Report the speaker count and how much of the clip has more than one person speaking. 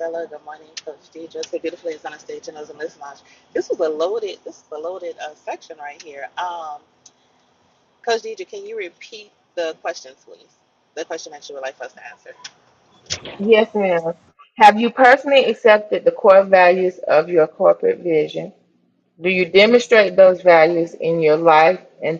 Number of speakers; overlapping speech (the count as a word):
two, no overlap